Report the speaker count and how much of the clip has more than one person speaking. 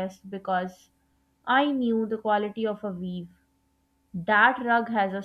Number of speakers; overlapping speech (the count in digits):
1, no overlap